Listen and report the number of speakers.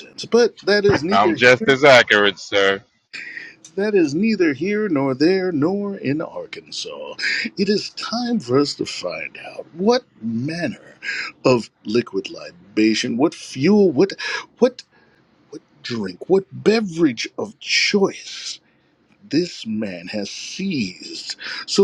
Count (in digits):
2